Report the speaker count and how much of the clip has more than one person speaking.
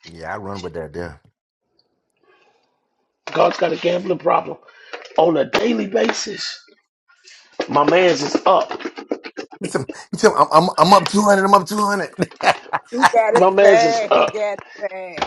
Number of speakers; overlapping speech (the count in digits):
3, about 7%